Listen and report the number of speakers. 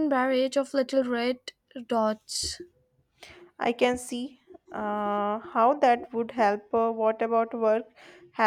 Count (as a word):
two